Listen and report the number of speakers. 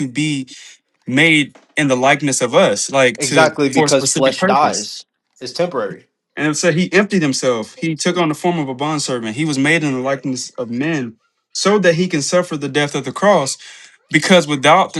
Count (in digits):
2